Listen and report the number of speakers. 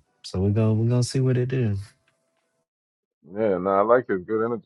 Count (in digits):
2